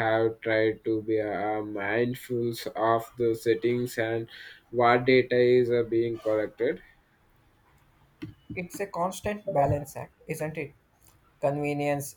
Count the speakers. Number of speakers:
two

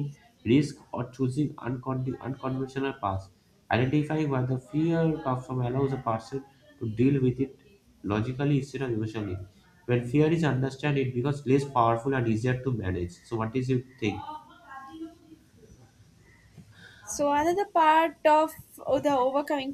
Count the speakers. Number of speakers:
two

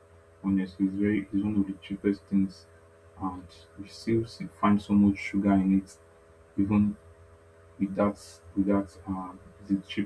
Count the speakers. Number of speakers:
one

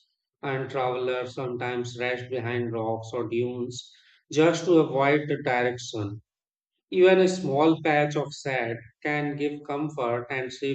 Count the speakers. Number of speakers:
one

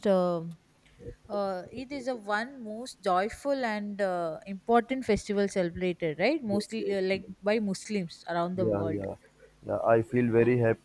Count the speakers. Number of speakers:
two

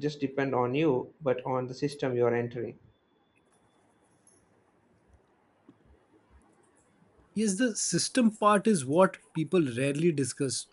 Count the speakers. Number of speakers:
two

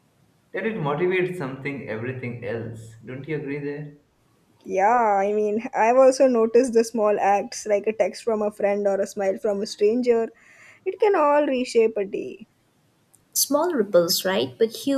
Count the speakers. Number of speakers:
three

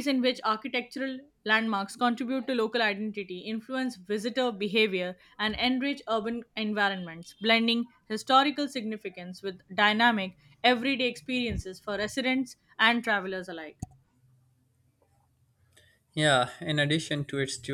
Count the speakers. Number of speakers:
two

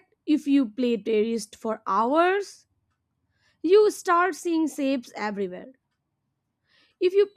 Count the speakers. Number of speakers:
one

